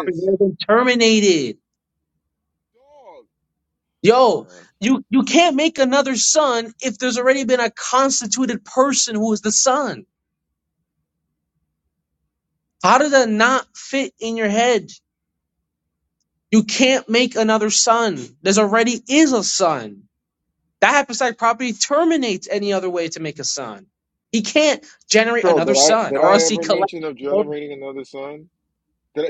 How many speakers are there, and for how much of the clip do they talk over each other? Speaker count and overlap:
two, about 6%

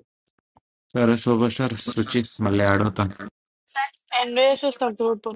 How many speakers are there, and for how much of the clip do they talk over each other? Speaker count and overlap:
two, no overlap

